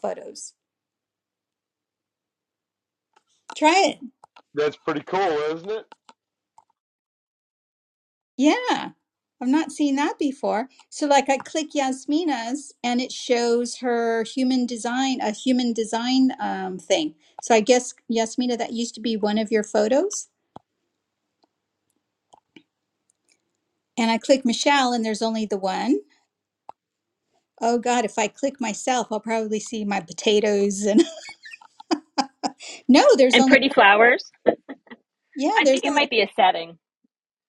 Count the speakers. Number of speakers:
three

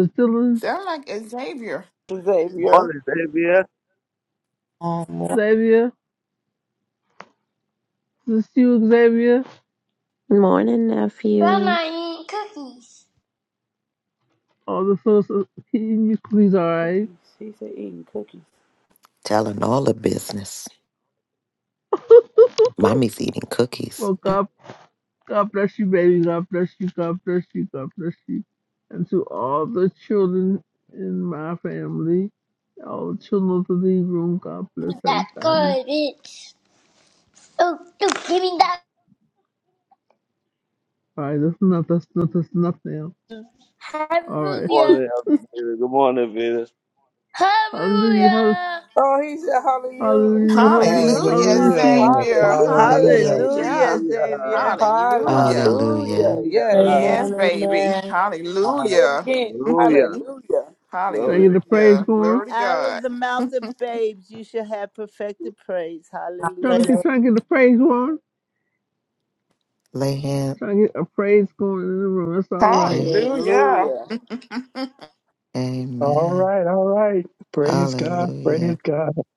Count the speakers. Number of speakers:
ten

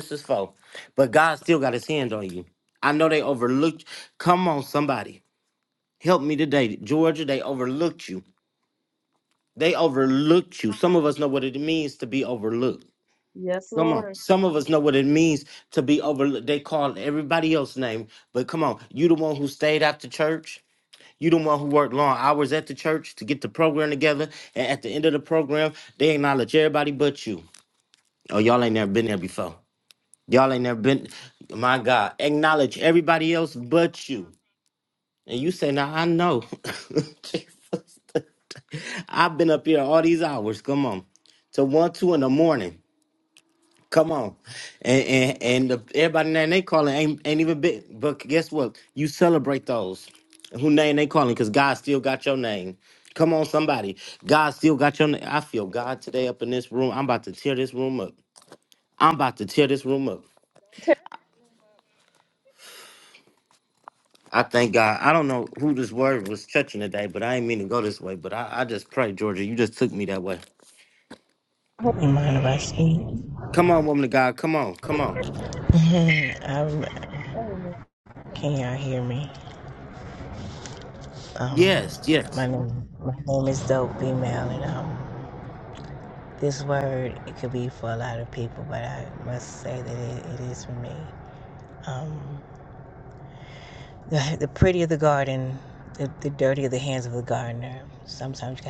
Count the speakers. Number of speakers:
three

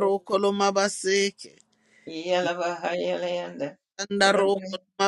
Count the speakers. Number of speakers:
two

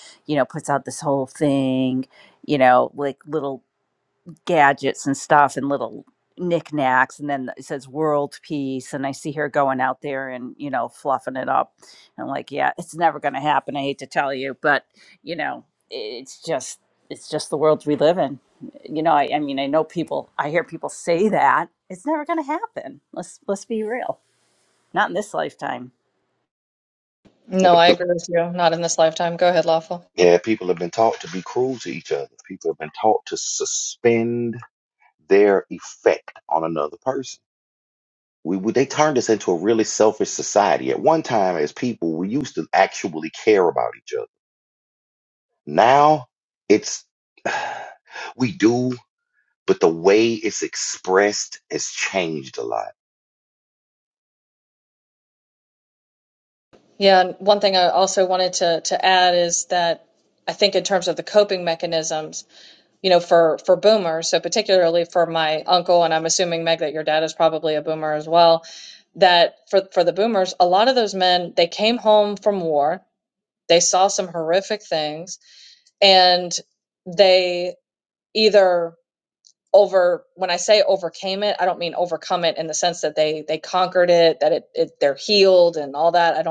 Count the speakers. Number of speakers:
three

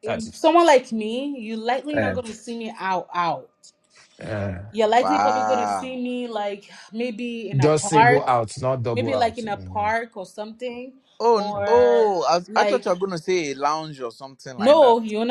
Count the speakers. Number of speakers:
three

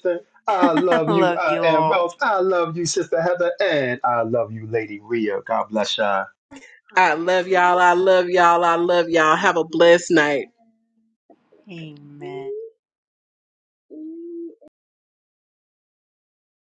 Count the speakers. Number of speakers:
three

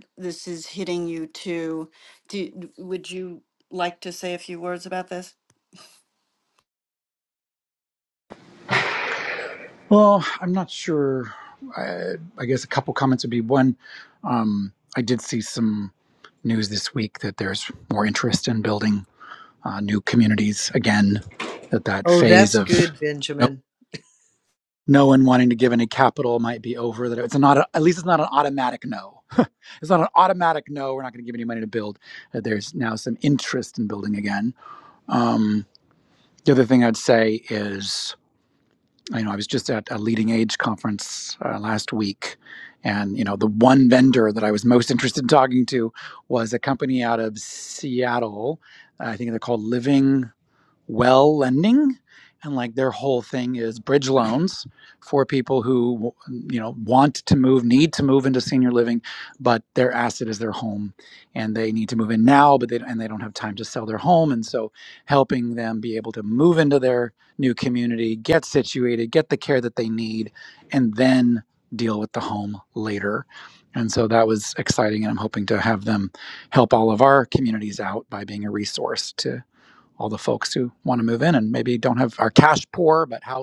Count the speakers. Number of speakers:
three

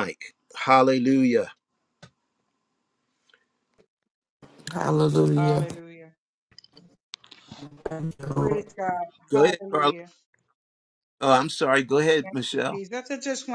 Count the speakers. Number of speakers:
three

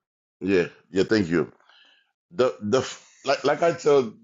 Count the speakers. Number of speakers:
one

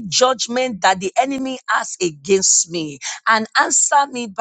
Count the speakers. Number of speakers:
one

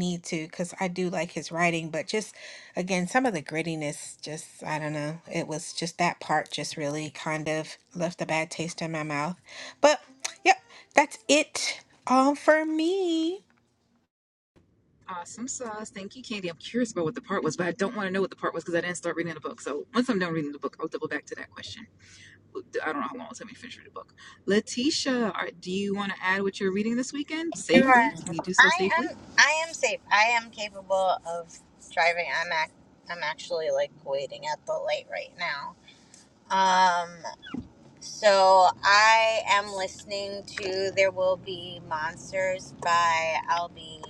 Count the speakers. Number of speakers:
three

